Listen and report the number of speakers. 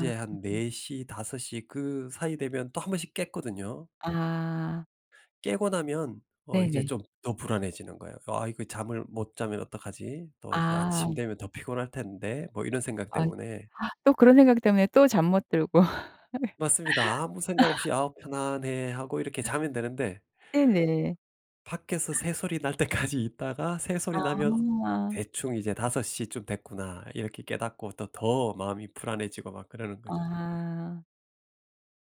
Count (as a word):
two